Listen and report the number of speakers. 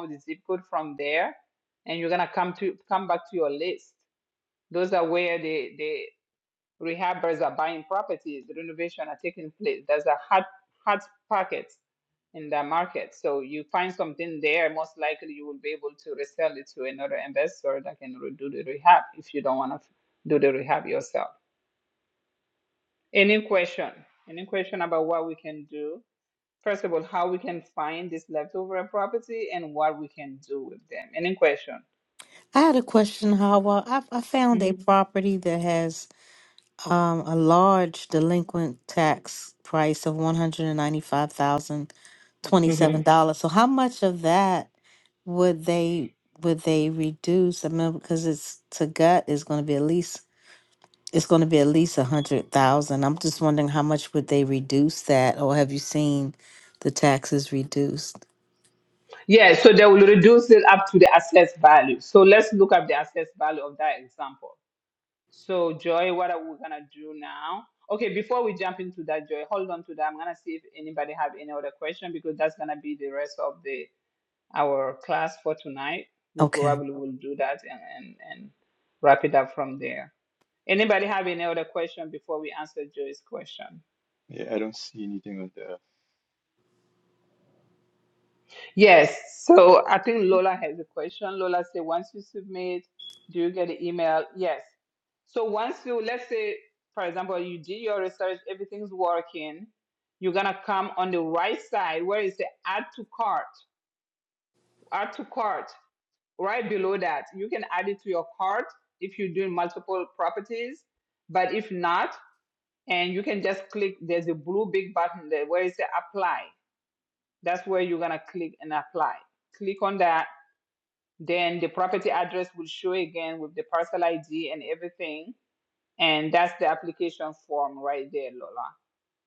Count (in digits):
3